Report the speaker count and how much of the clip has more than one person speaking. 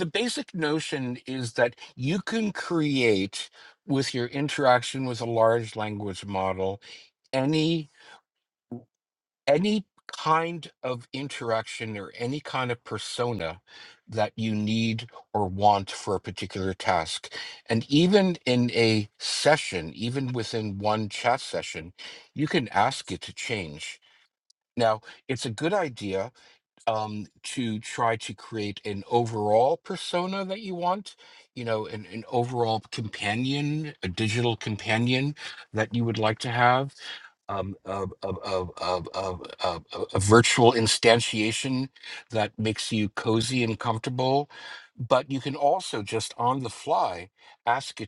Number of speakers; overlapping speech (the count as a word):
one, no overlap